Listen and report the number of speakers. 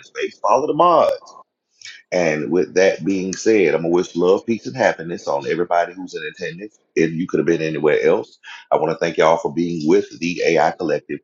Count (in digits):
1